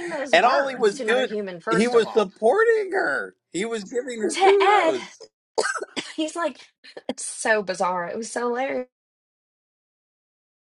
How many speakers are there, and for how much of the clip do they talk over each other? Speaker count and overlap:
2, about 21%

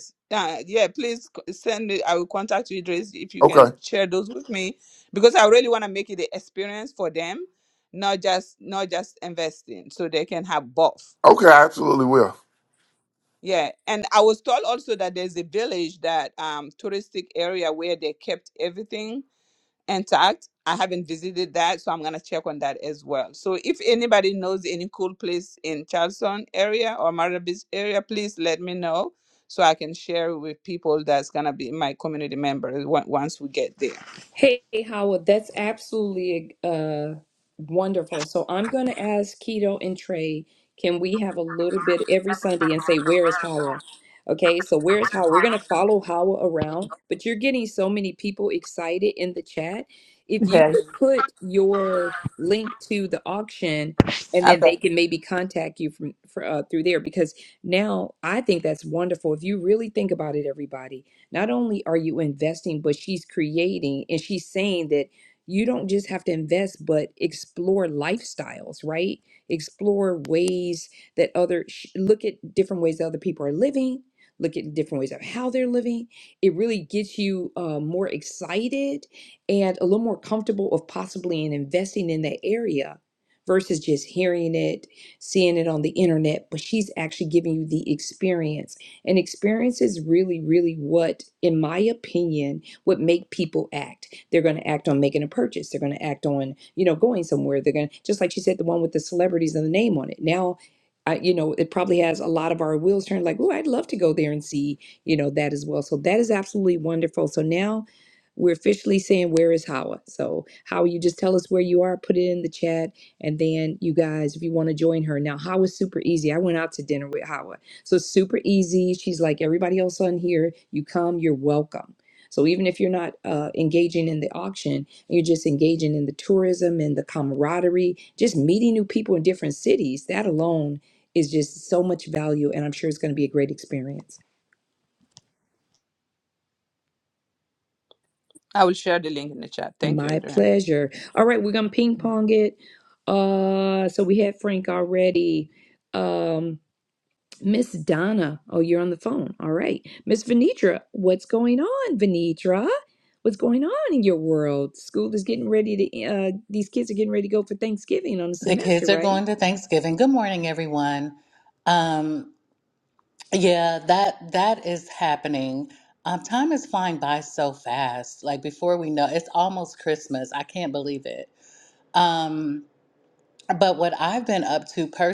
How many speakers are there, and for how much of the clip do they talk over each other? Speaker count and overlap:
4, about 1%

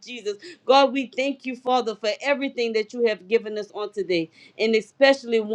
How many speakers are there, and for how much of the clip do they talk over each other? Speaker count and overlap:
1, no overlap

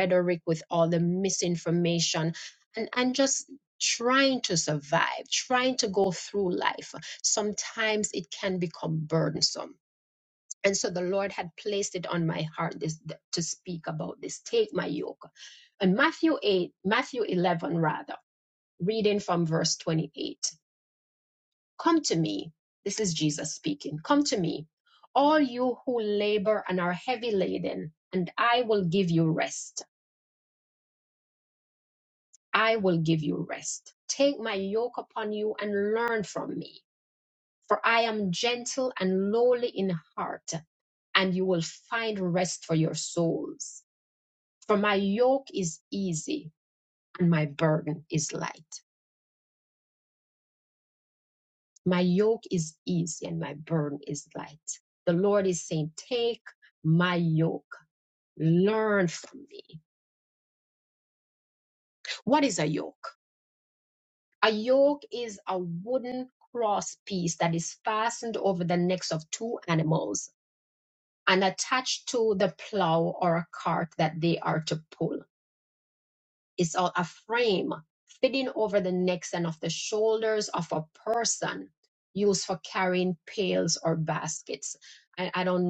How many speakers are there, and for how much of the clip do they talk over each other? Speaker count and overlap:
1, no overlap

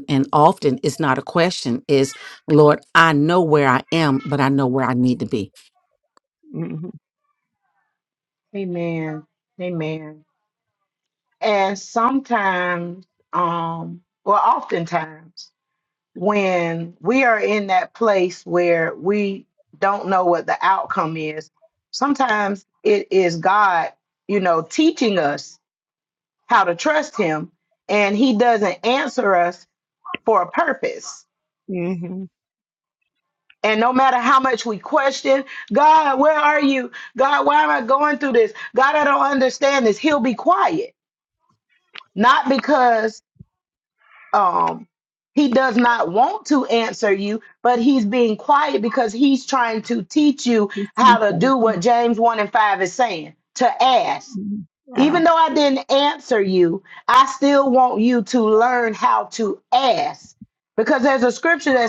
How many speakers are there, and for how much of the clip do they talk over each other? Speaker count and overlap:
3, under 1%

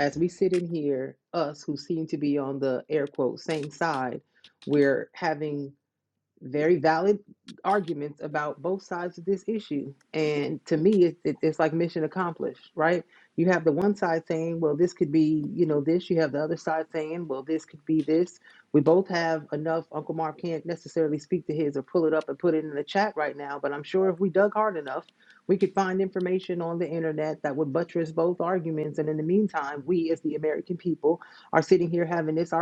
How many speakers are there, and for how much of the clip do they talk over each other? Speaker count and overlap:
1, no overlap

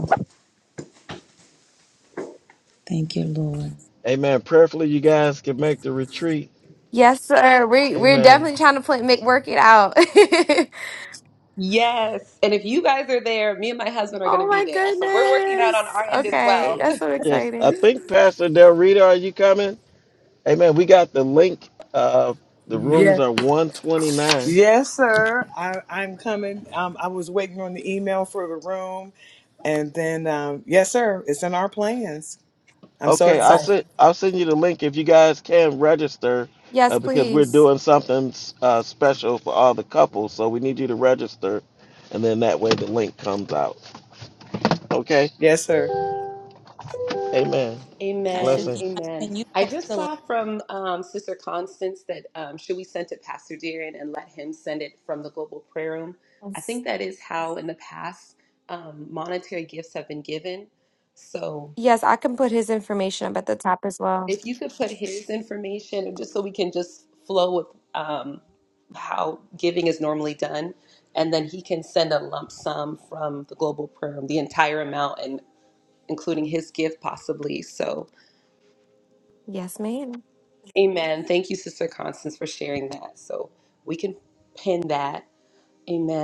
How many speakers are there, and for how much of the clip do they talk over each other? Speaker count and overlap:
5, about 8%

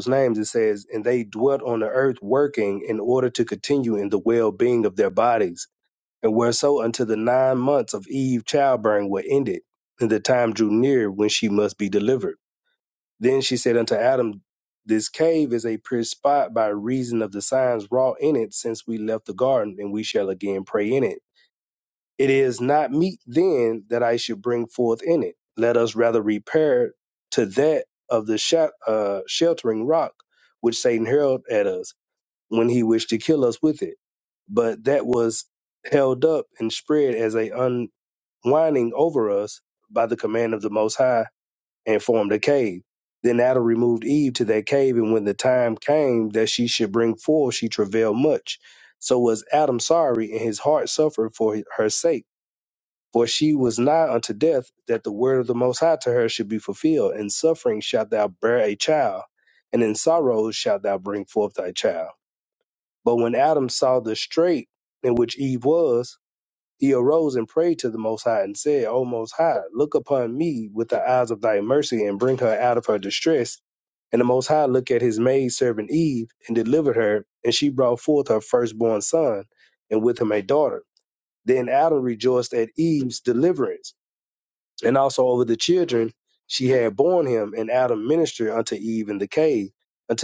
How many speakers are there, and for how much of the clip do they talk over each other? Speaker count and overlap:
1, no overlap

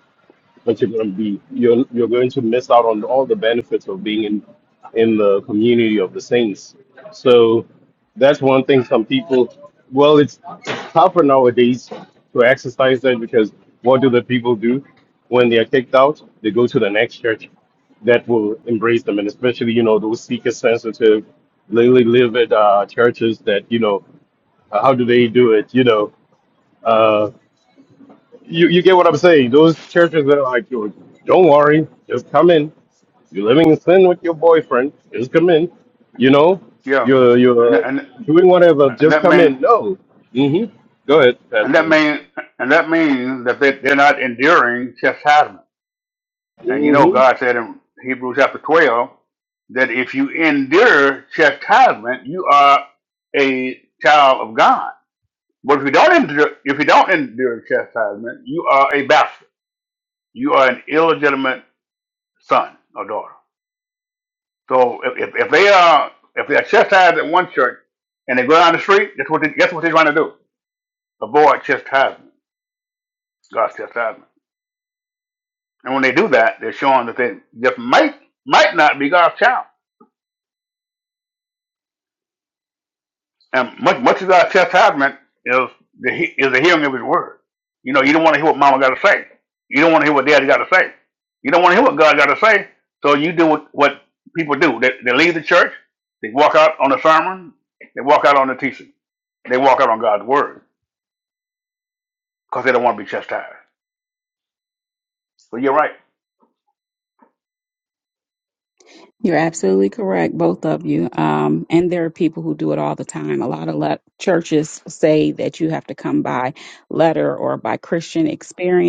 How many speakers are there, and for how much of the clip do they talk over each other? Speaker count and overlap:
3, about 1%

